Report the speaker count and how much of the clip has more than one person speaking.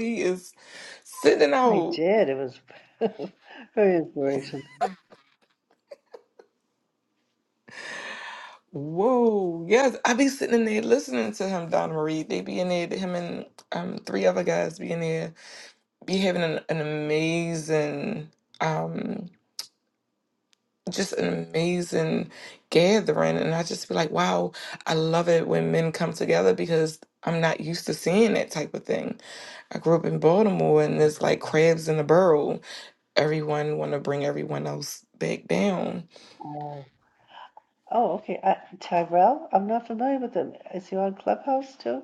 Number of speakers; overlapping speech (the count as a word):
two, about 1%